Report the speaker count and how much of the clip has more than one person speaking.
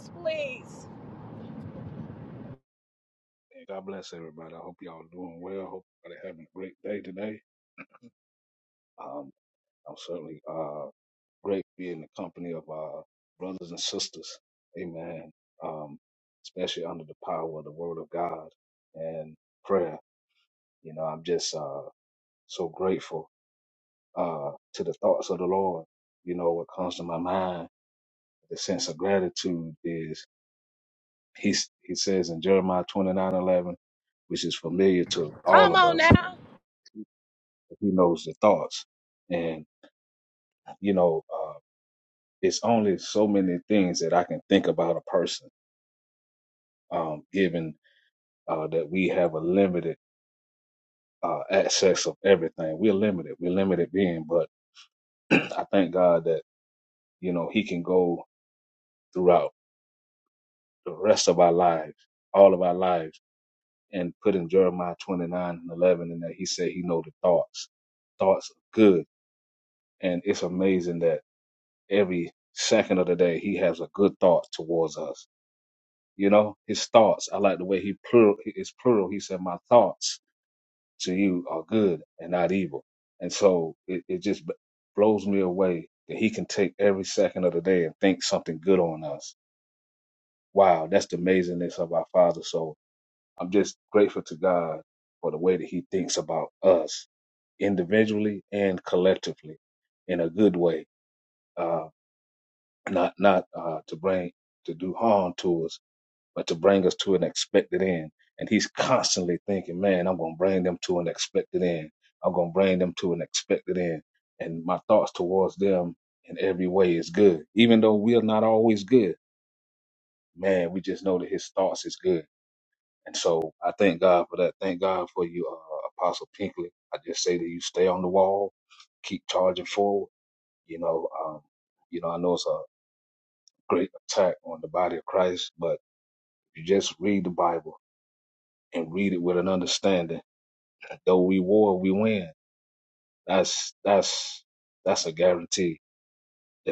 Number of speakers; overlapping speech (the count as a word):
two, under 1%